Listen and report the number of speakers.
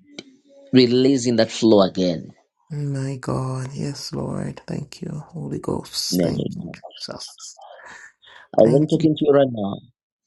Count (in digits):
2